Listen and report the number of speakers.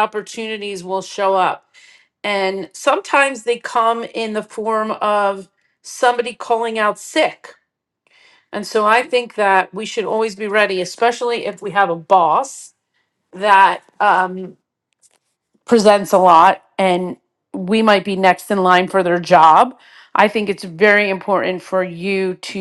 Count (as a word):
one